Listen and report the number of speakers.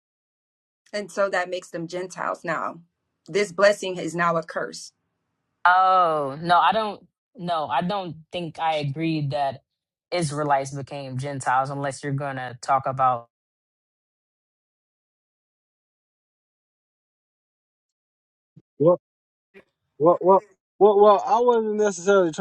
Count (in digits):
3